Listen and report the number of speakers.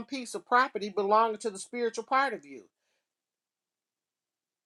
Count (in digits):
1